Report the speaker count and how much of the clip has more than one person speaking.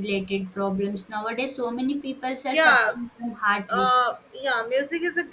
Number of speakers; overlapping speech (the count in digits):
2, about 14%